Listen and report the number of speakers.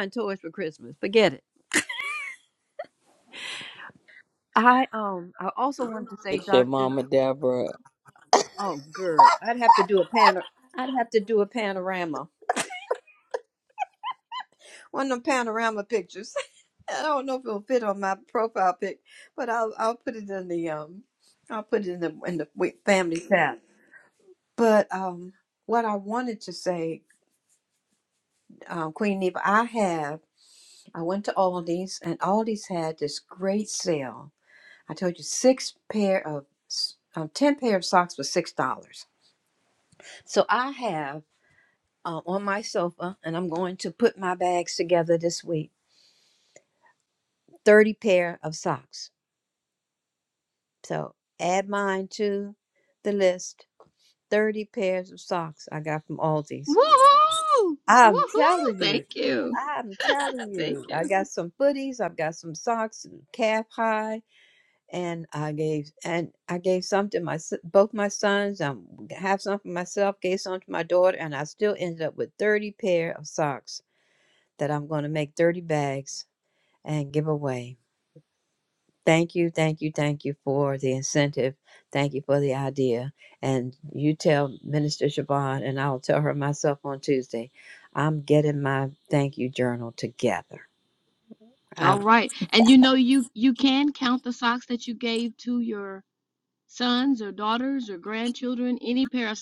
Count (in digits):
3